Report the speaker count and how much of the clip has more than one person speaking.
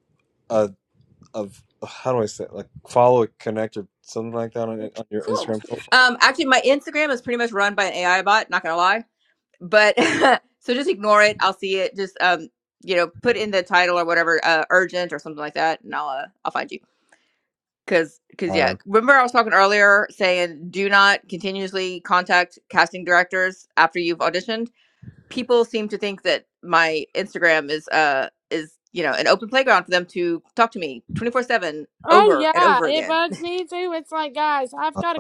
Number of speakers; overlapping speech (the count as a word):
three, about 5%